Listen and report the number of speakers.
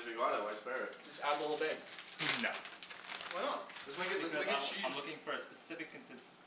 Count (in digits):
3